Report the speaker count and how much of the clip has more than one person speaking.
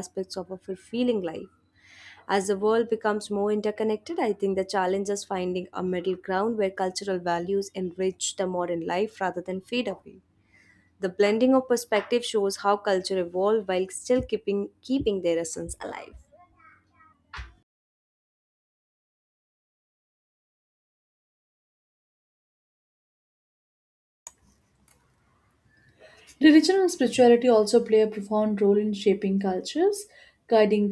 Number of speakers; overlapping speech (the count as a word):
two, no overlap